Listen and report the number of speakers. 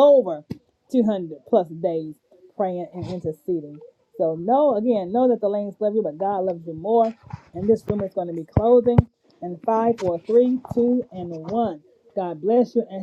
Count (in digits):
1